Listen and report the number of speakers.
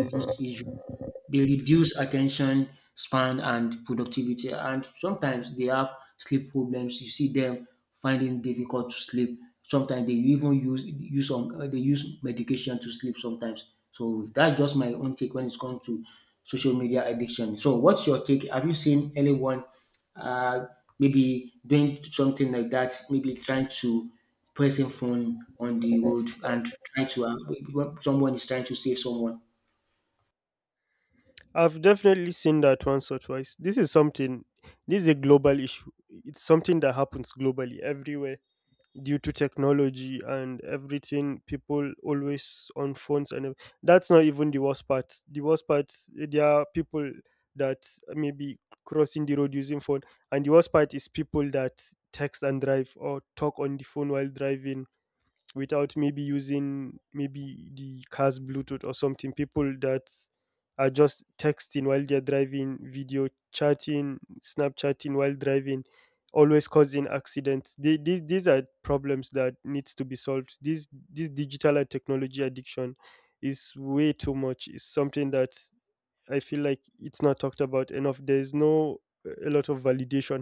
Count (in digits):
2